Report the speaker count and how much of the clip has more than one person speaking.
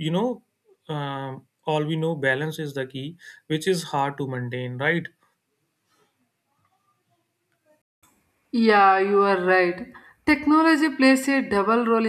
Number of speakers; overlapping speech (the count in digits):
2, no overlap